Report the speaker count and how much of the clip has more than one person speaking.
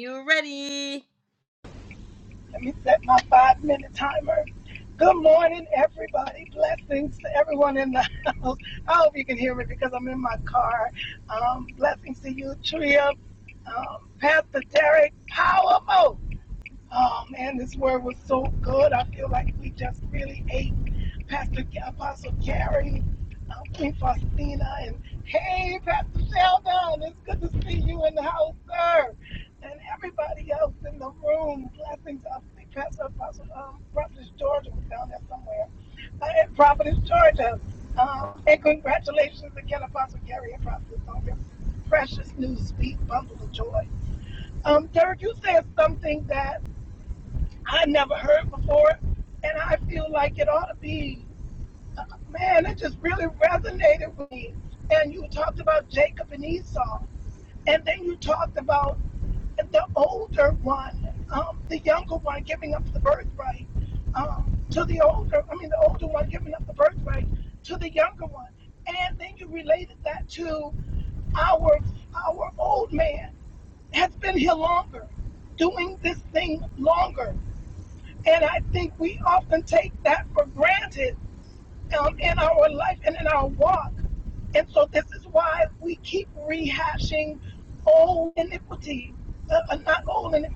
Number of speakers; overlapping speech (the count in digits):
2, no overlap